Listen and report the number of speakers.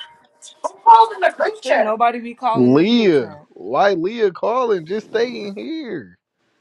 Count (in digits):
3